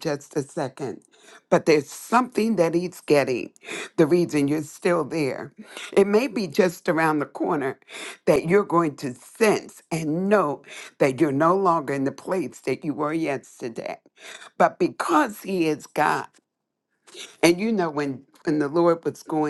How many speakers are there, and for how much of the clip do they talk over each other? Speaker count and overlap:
one, no overlap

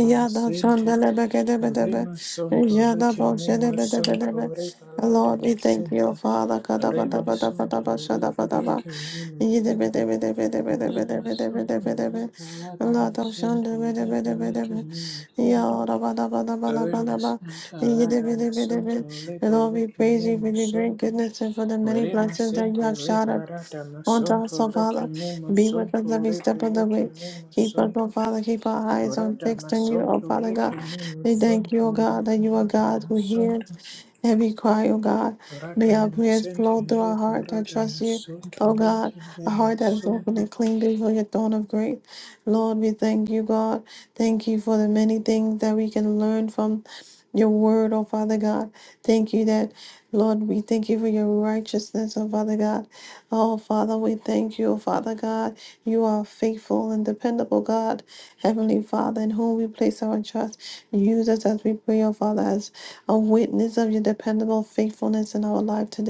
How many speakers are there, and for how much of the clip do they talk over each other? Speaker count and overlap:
two, about 39%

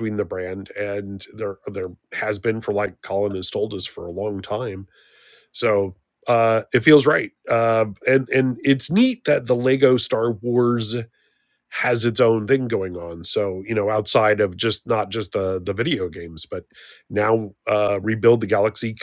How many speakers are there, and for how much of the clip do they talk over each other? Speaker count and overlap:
one, no overlap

